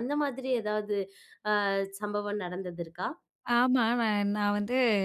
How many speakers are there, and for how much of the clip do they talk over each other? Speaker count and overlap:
two, no overlap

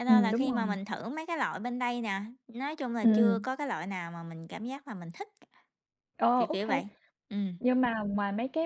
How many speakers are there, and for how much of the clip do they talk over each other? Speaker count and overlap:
two, about 18%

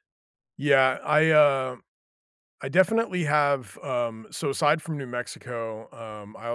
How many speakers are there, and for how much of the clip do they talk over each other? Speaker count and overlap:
one, no overlap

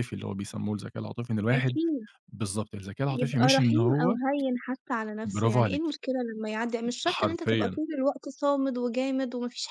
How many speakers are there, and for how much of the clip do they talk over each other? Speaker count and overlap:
two, about 27%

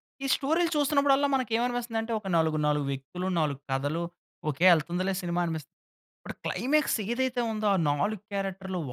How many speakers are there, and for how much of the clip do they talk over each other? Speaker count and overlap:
one, no overlap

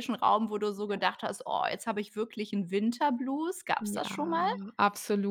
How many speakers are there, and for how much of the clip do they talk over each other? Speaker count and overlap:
two, about 16%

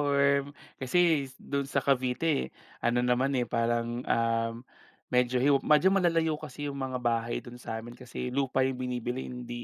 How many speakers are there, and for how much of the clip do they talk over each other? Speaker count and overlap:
one, no overlap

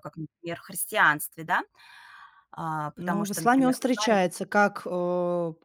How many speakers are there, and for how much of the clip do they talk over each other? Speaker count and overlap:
two, about 21%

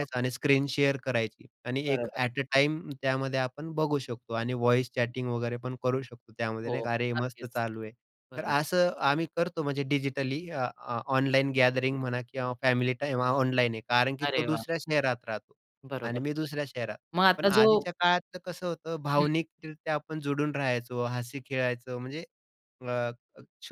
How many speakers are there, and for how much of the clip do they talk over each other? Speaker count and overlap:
two, about 10%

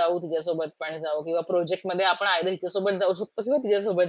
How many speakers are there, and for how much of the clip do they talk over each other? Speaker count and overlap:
one, no overlap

